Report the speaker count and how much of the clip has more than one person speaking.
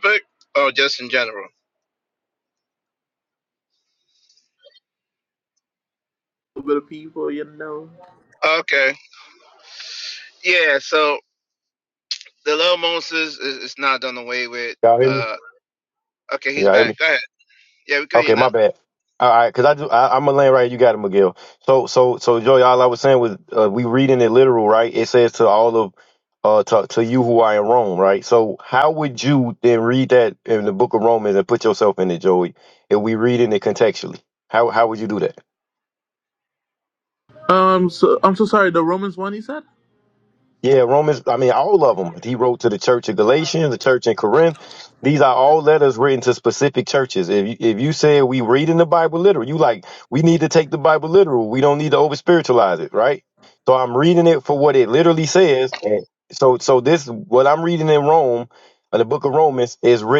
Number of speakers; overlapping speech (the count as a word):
three, about 2%